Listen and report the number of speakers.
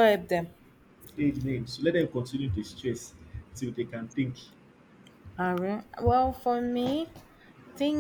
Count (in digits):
2